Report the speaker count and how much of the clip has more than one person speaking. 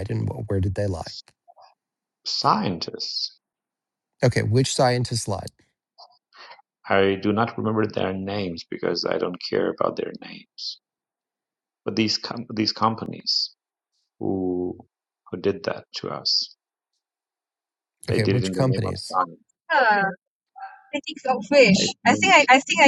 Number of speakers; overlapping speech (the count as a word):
three, about 6%